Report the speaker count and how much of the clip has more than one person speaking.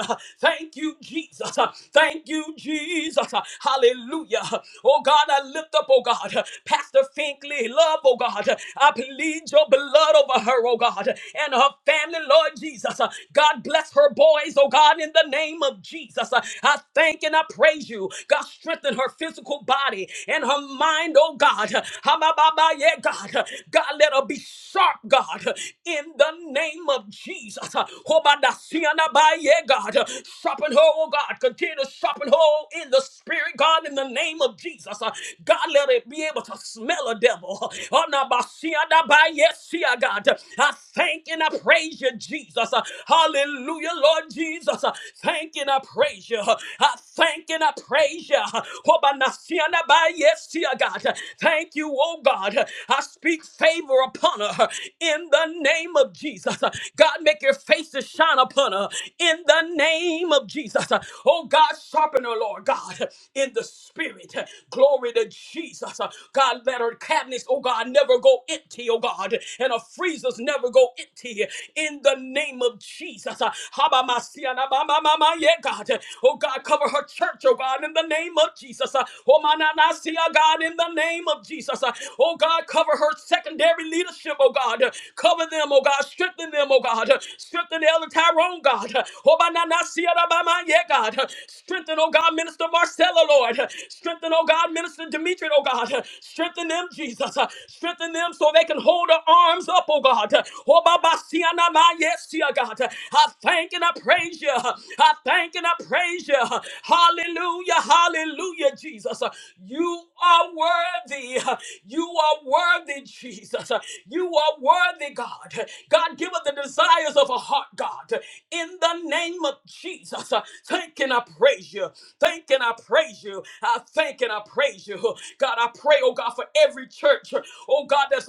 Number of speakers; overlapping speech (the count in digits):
1, no overlap